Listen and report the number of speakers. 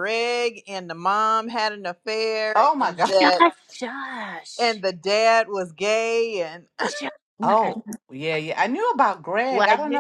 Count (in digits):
3